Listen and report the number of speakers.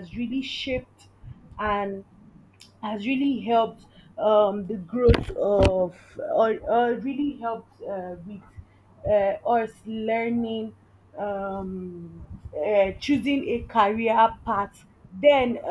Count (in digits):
1